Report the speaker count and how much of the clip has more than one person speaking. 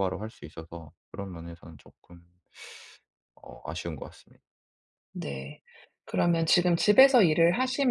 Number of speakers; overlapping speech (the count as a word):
two, no overlap